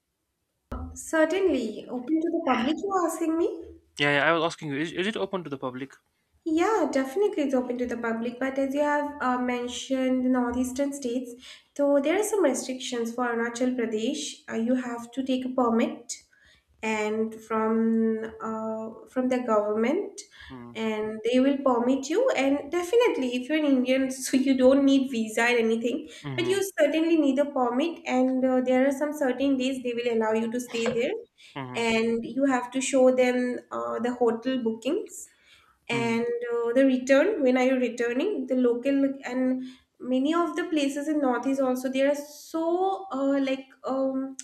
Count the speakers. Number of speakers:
two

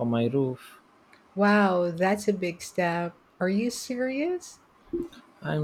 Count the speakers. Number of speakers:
two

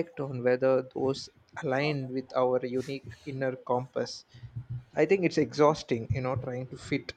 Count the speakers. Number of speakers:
one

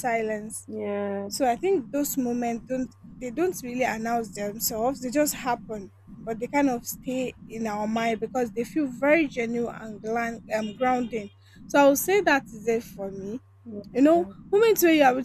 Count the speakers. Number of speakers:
two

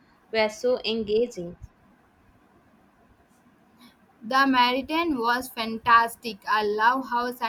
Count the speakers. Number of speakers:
two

